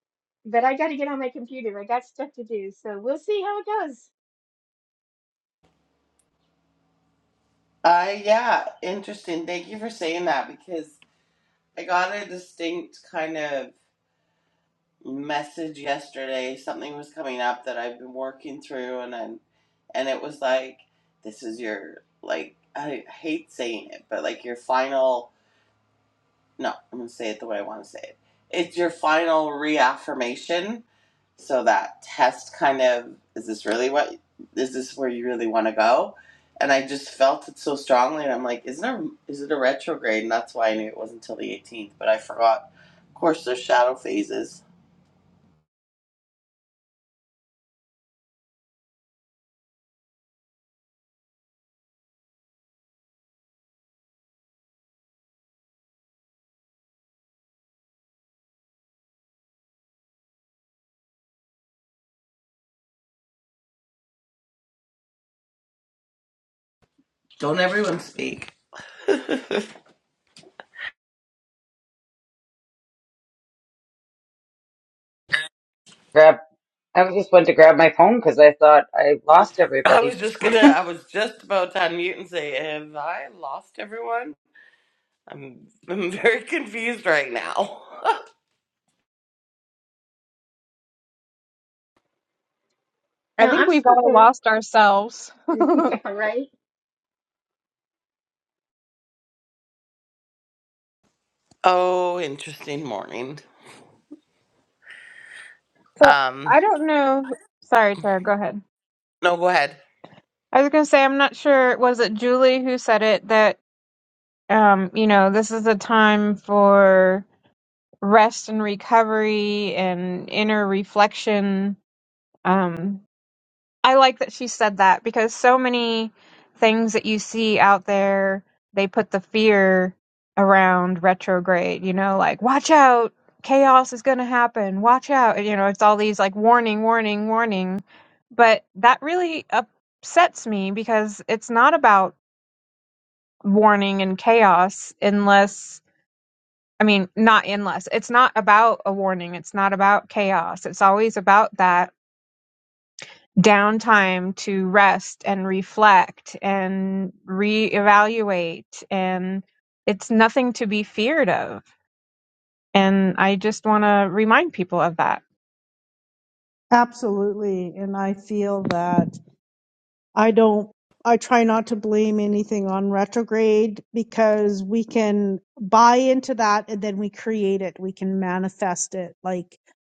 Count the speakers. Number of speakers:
five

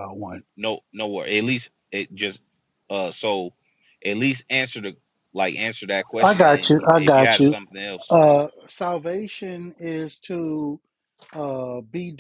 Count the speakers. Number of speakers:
two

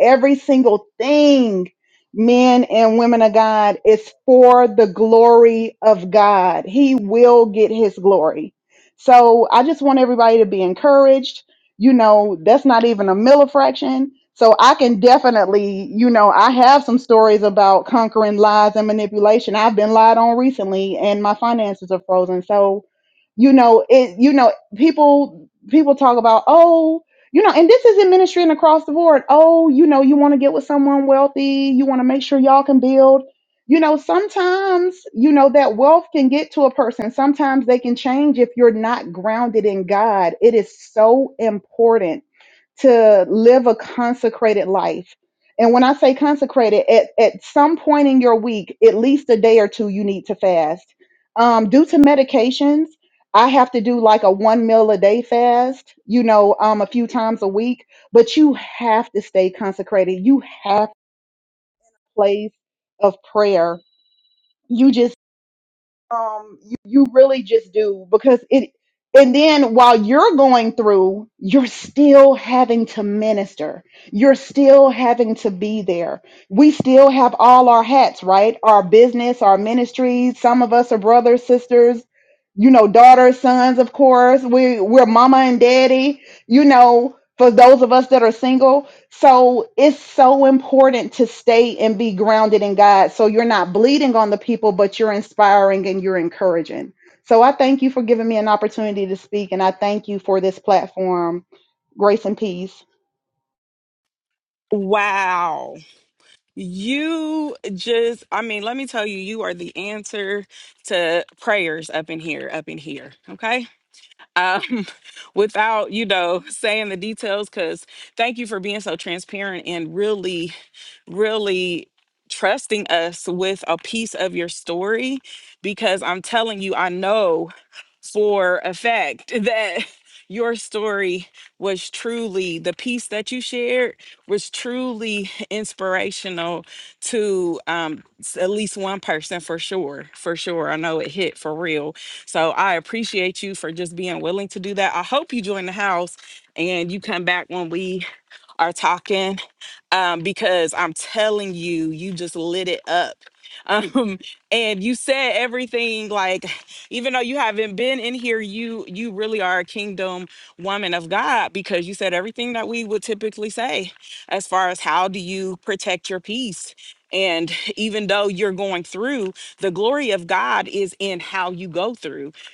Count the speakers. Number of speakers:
two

